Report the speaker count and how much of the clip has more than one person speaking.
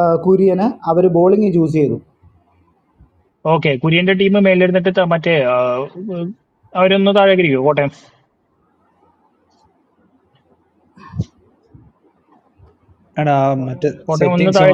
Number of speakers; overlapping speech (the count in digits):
3, about 4%